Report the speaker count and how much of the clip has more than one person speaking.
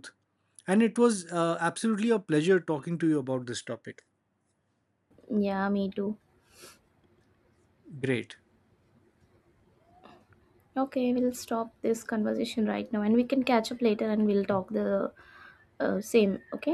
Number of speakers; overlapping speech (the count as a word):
two, no overlap